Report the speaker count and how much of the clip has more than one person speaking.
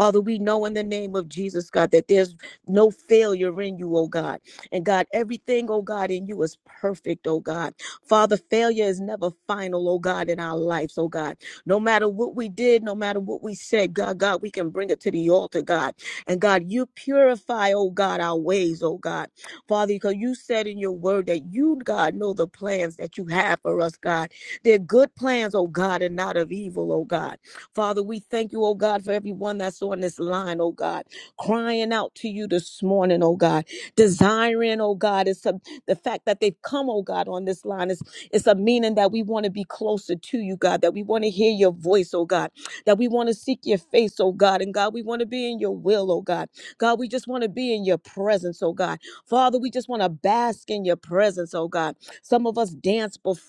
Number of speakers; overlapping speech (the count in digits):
1, no overlap